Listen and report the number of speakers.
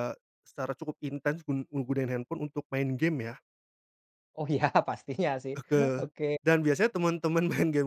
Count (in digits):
2